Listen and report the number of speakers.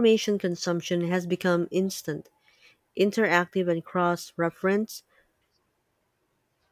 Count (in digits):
1